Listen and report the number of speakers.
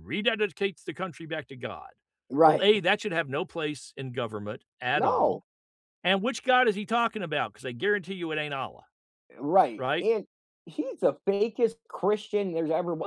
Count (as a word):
two